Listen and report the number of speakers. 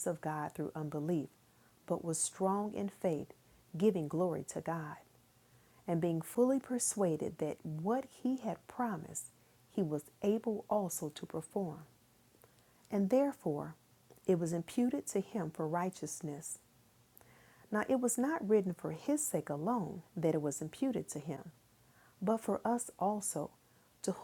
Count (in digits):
1